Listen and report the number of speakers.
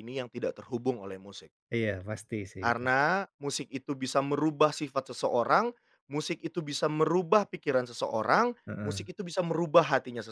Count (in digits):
2